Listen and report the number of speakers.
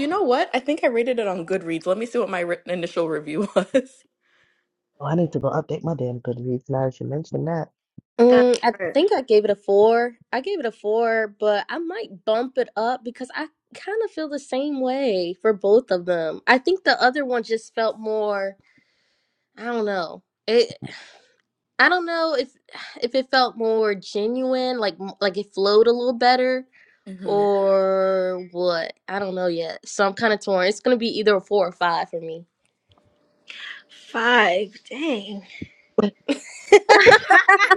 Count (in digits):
4